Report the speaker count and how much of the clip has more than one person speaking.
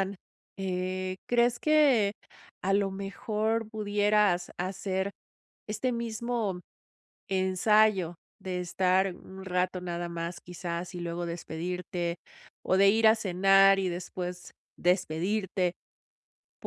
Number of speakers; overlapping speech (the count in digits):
1, no overlap